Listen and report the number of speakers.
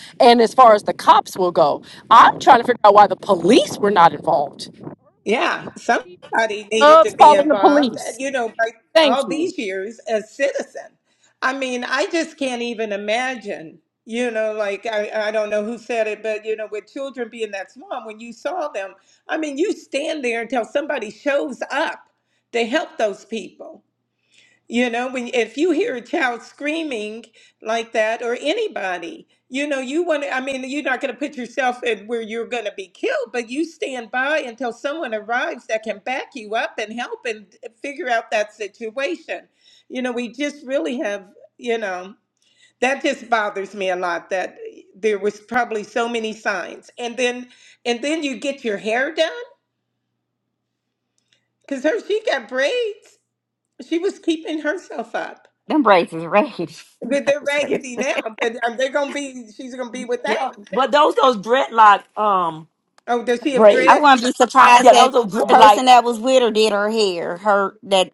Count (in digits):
4